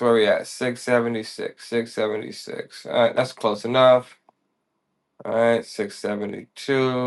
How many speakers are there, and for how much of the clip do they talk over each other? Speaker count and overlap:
1, no overlap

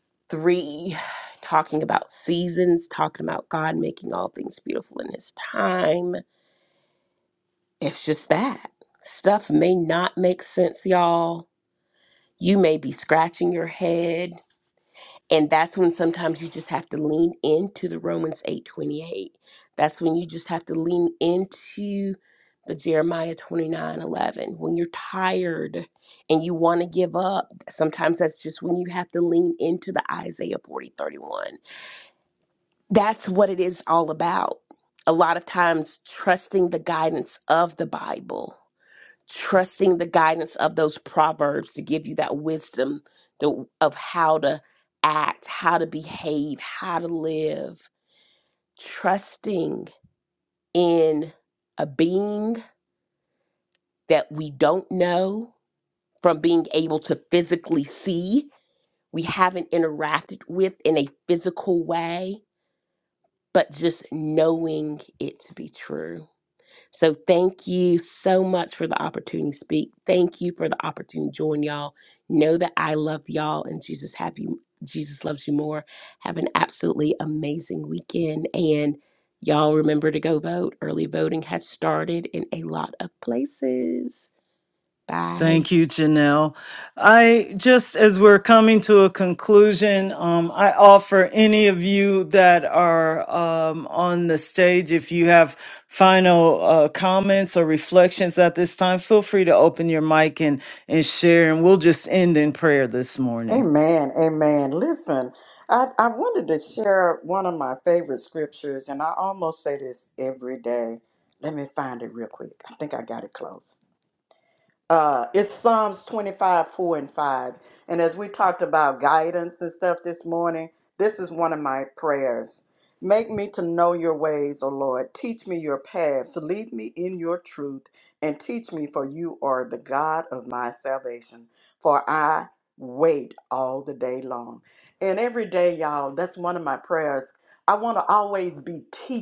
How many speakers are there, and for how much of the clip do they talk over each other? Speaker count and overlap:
3, under 1%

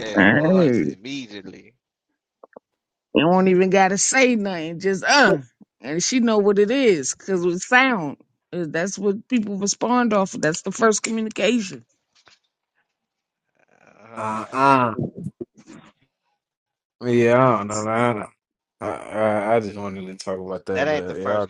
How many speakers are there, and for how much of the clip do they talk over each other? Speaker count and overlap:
3, about 7%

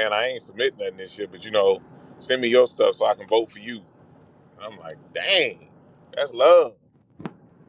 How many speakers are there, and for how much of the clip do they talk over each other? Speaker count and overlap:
1, no overlap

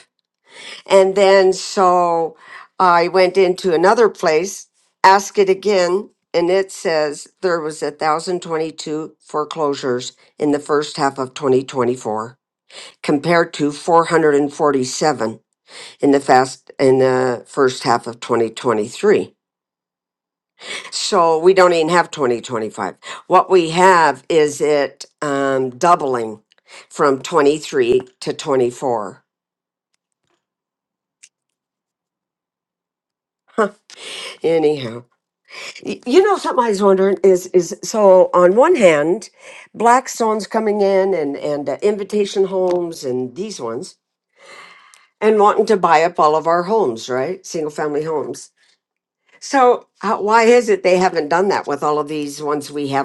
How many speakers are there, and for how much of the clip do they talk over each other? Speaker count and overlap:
1, no overlap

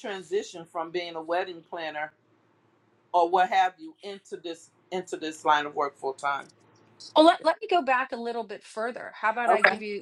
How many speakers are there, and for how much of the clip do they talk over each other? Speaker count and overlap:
2, about 3%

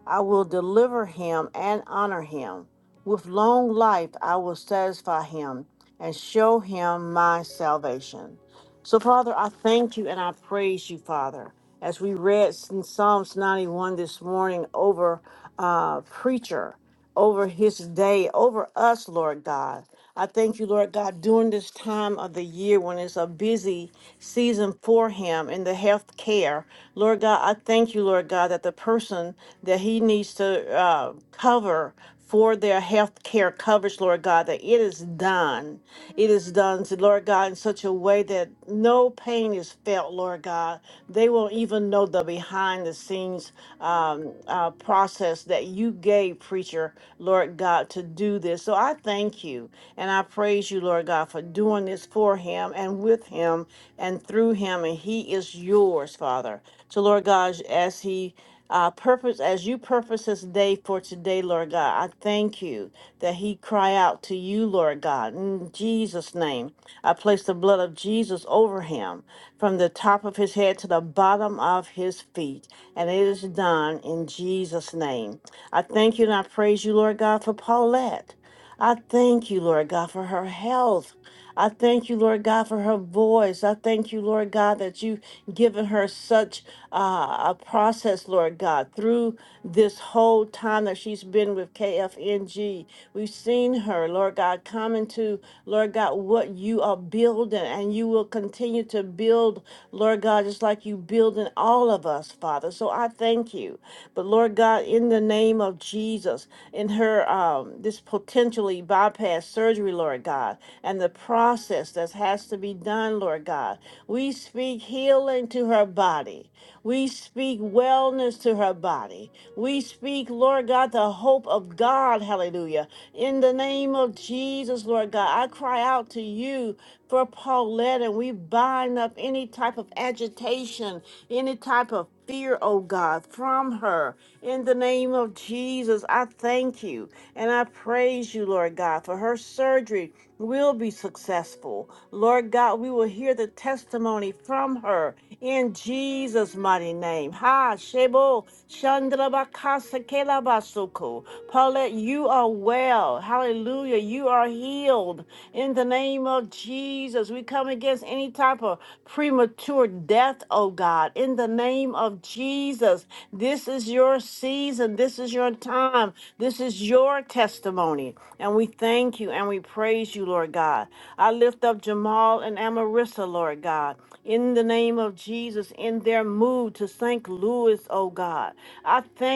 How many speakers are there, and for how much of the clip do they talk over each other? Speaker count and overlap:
1, no overlap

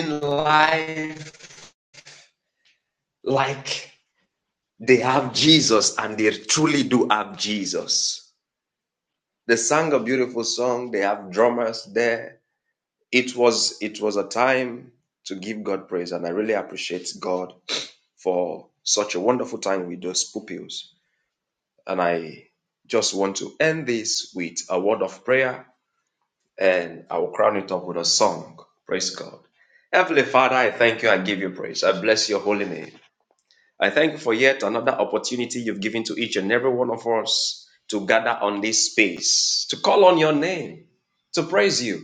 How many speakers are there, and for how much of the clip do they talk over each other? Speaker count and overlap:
1, no overlap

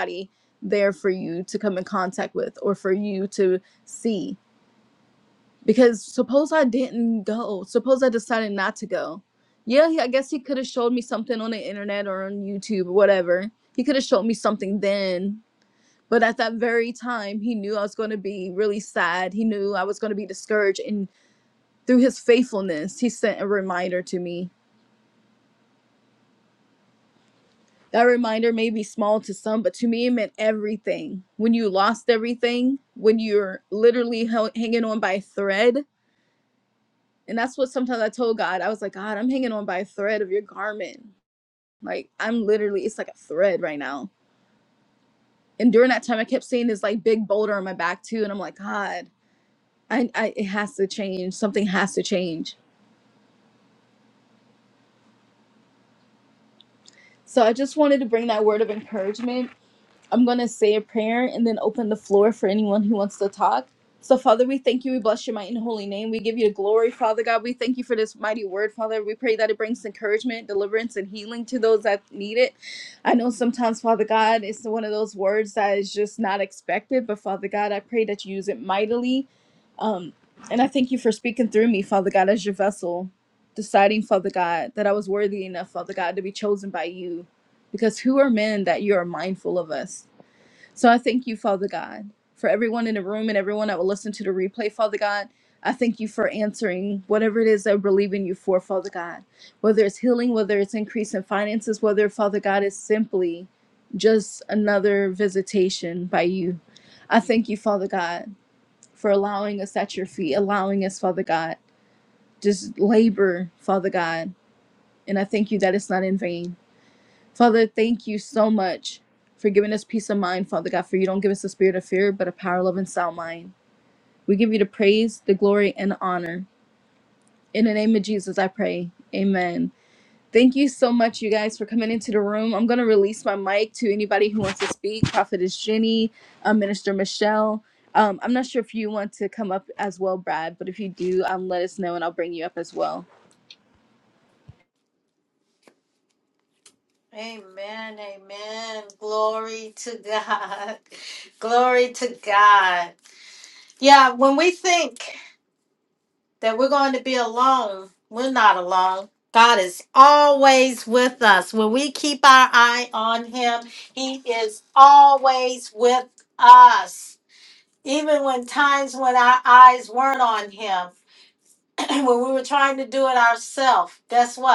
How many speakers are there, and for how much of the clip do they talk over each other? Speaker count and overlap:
2, no overlap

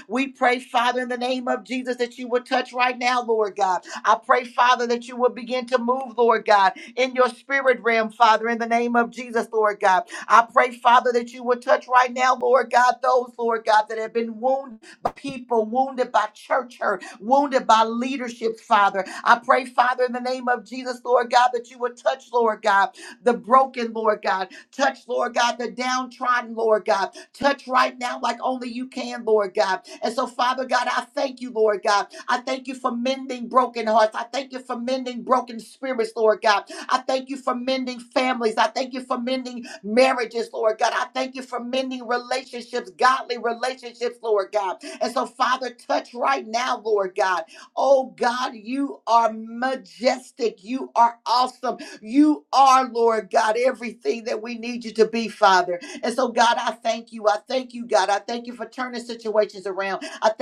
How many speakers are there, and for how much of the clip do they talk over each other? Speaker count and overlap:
1, no overlap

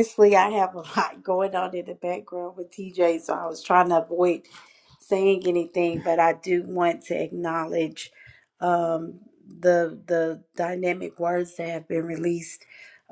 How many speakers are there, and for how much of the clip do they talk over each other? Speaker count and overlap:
1, no overlap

